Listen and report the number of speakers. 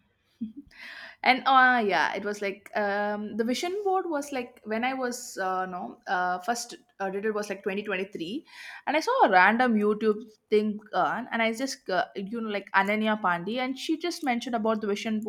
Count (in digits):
1